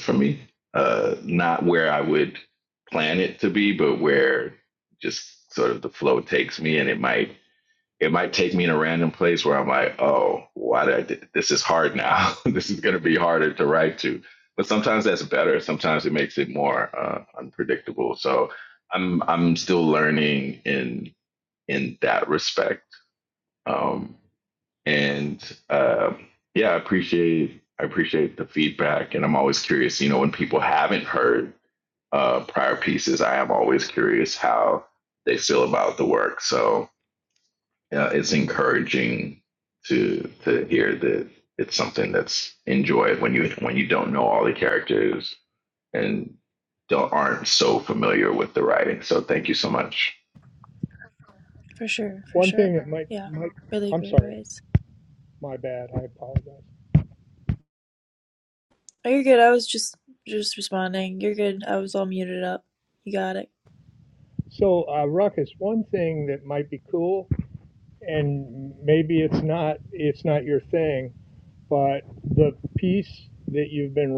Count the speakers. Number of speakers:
3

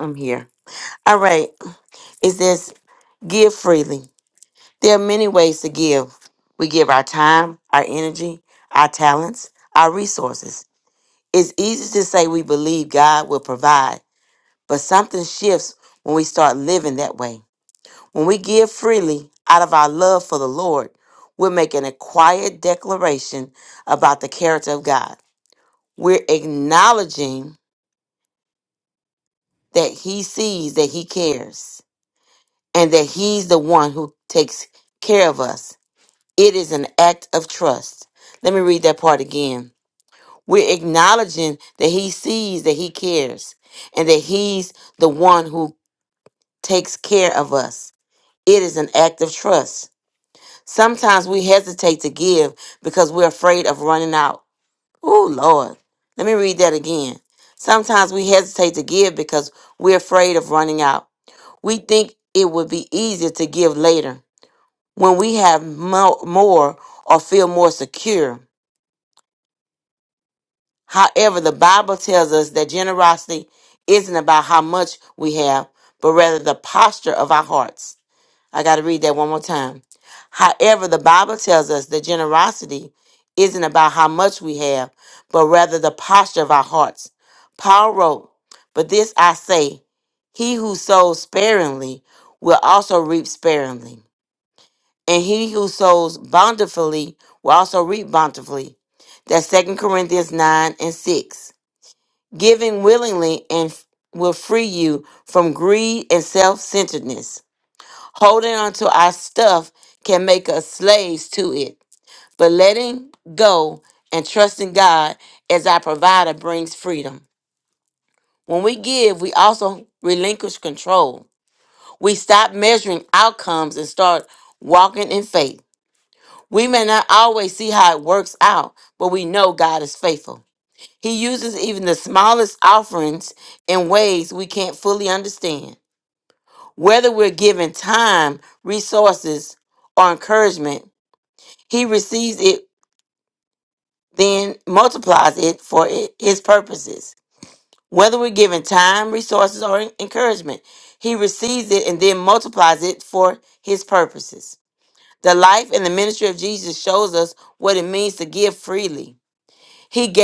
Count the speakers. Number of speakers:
1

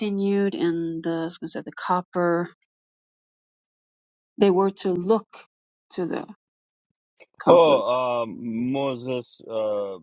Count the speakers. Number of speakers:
2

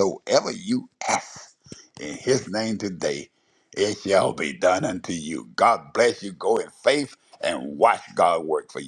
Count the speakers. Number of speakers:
1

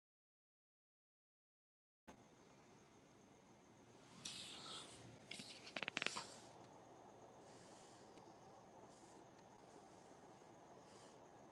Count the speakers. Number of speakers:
0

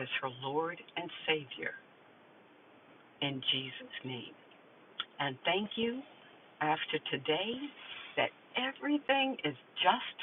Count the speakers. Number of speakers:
1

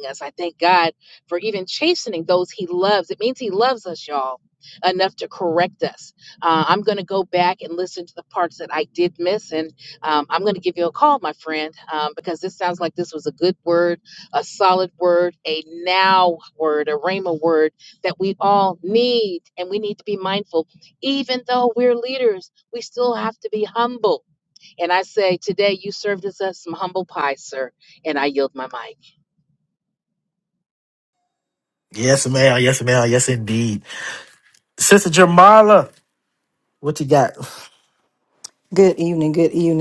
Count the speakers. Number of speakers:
3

